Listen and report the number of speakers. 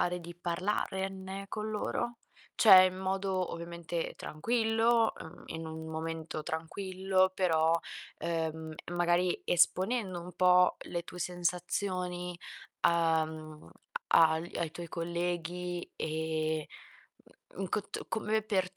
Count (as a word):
one